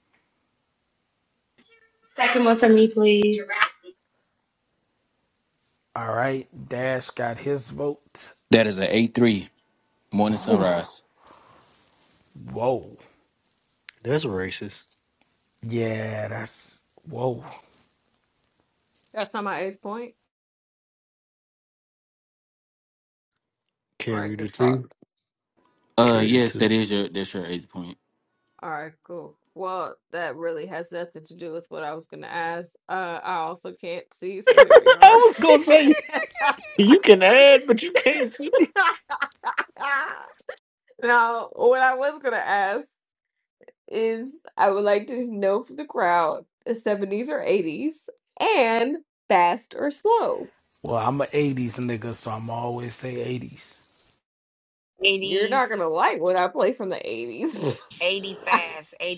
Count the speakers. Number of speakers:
6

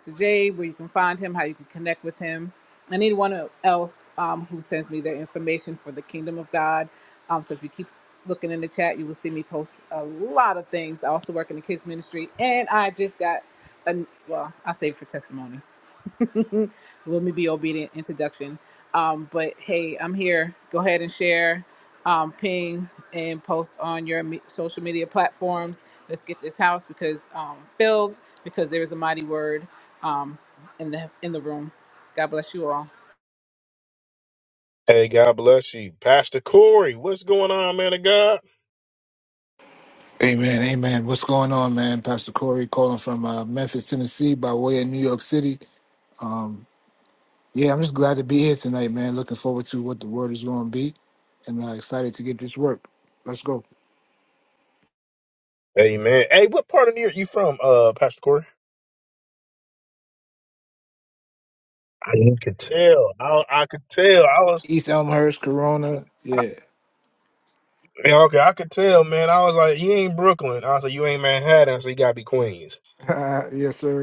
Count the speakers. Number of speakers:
3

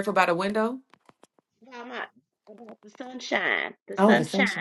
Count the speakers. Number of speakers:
2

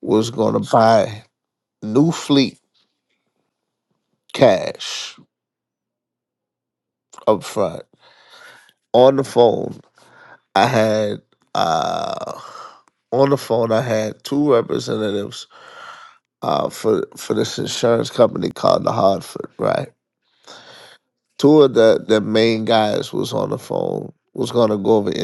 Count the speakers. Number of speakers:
1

